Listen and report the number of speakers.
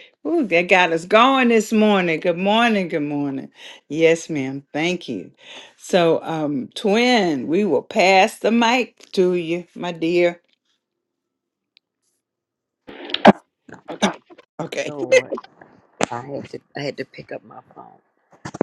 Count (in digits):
2